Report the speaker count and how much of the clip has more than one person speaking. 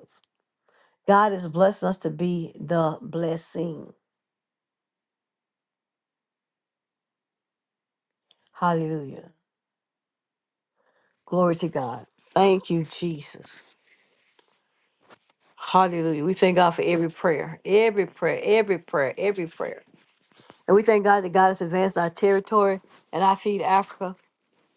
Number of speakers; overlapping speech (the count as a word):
one, no overlap